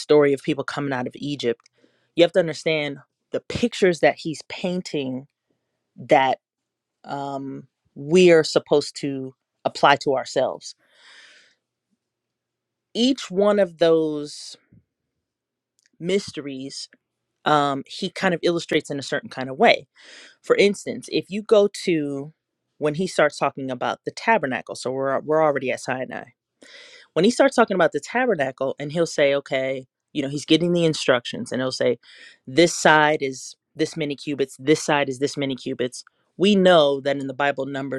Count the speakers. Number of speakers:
one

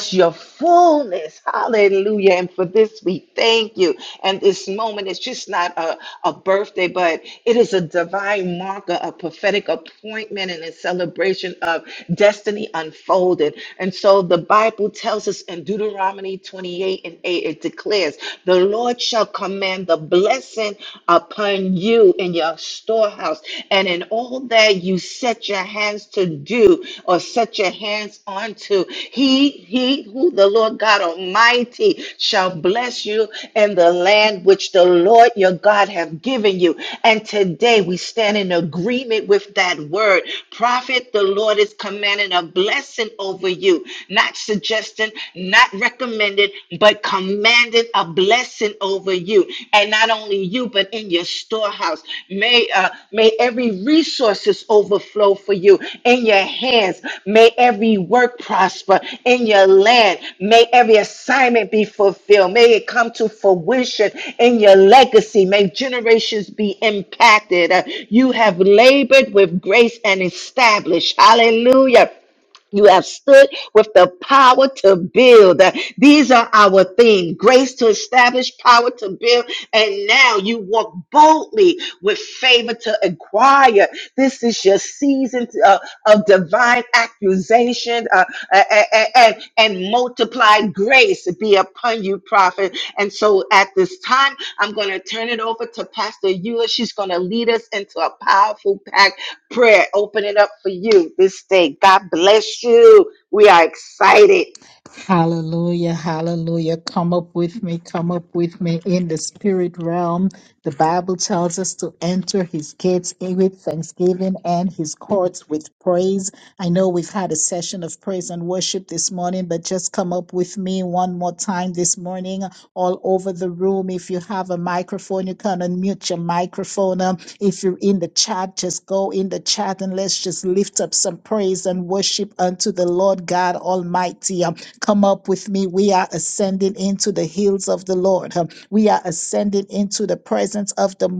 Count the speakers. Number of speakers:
two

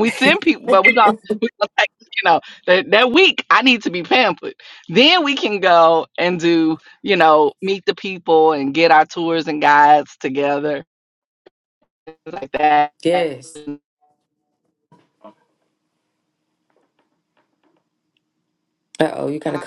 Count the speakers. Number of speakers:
two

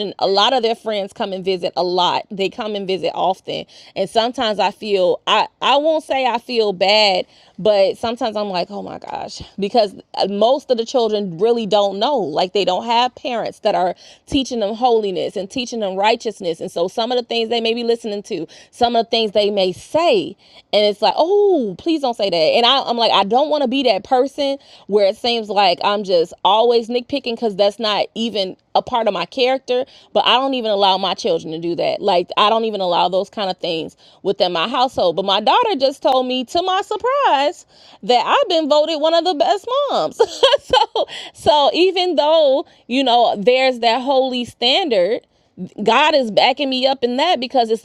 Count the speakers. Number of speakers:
one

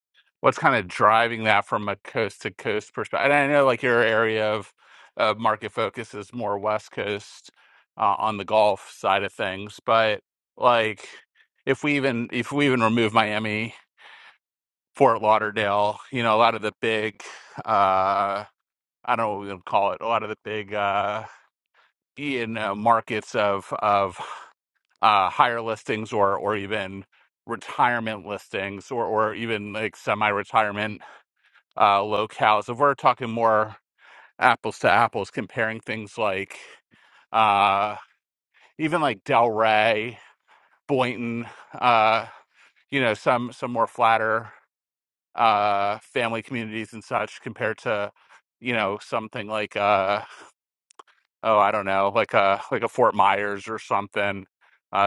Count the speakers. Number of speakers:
one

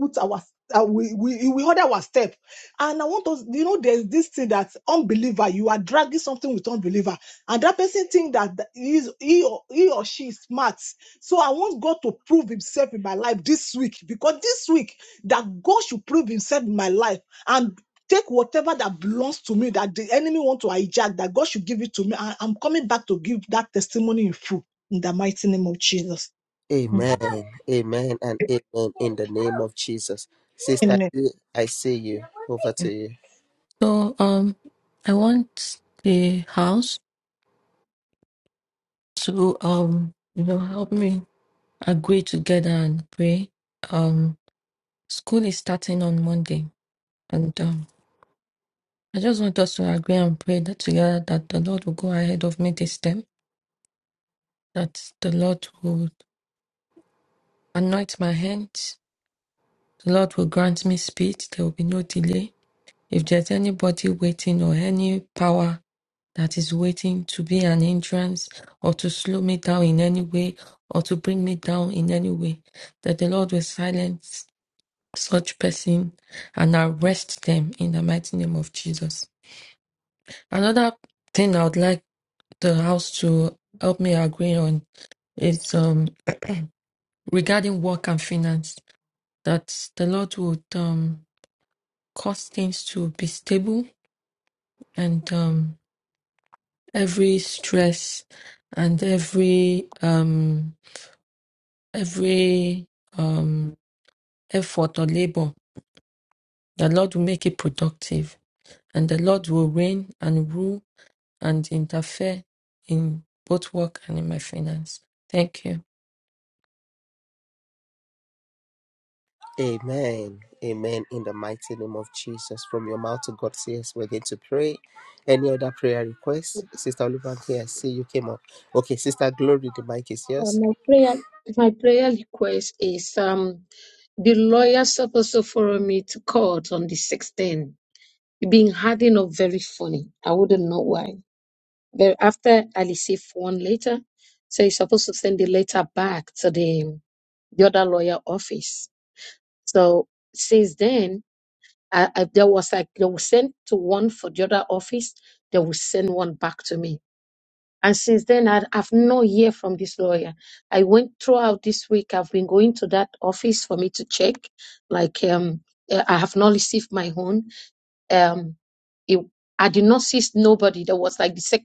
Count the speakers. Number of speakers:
four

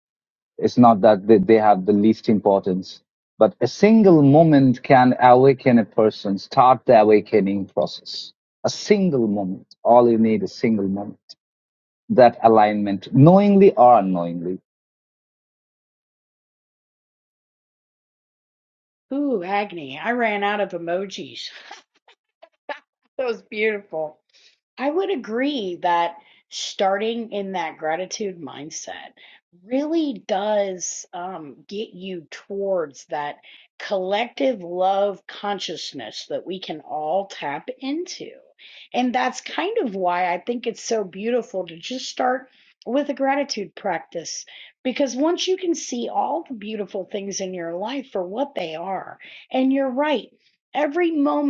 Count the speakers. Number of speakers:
two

